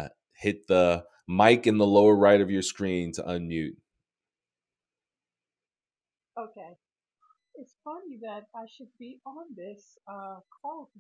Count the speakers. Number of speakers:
2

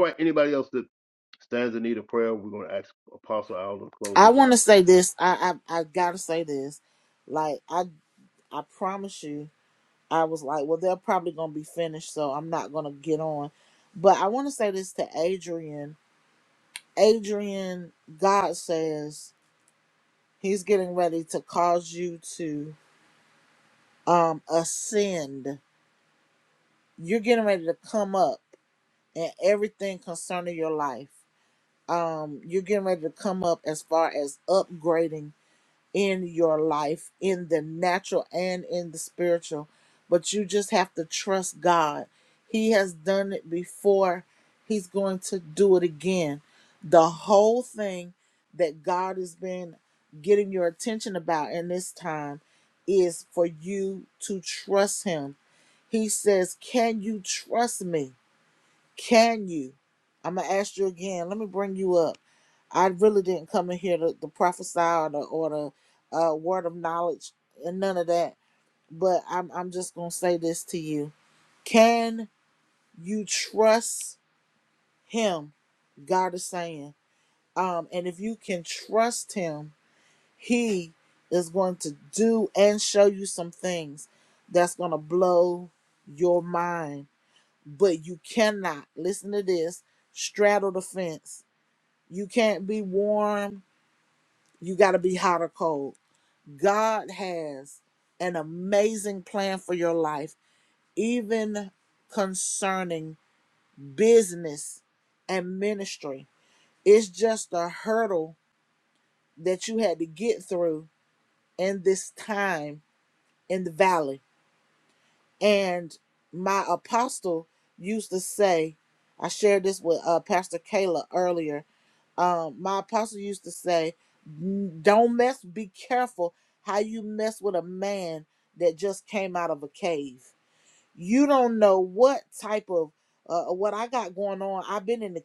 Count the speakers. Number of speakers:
2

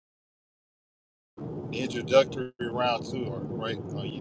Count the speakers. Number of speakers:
1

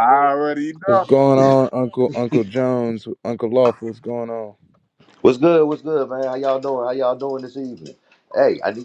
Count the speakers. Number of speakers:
3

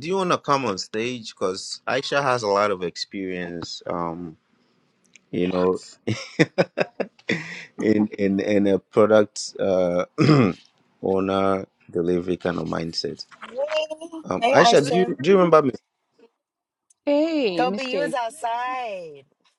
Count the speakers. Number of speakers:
3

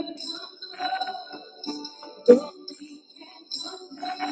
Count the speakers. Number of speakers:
0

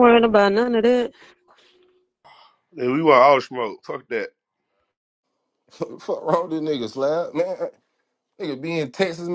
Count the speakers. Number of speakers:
3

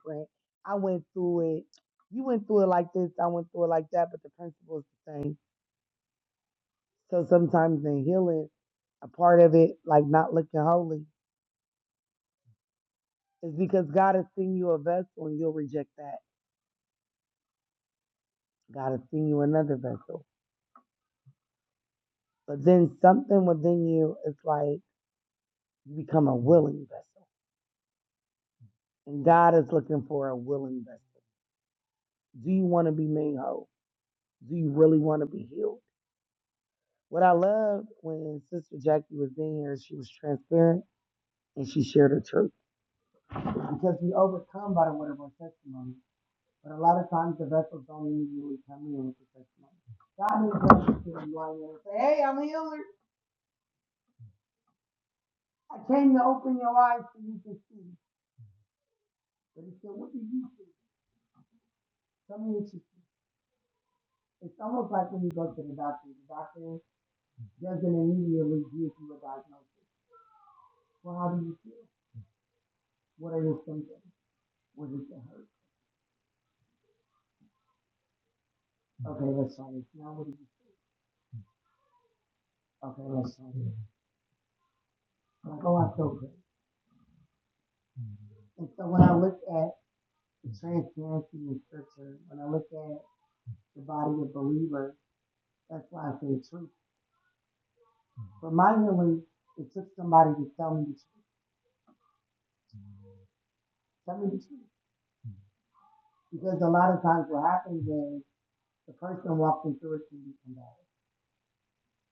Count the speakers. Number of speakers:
1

